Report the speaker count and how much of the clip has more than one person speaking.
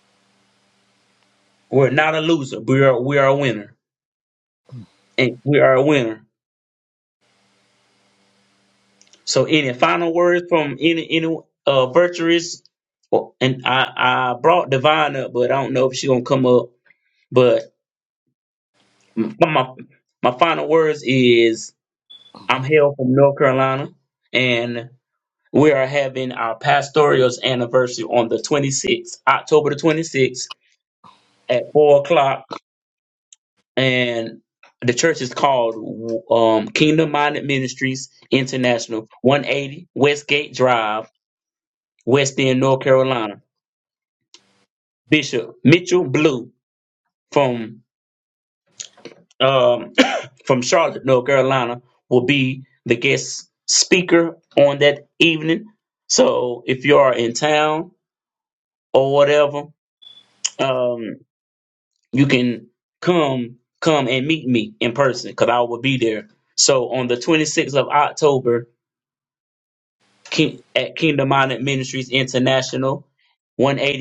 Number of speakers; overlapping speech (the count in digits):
1, no overlap